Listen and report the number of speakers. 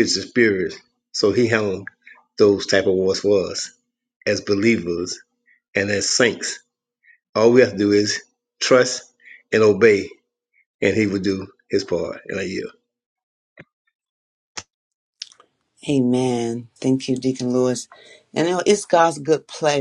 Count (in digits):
2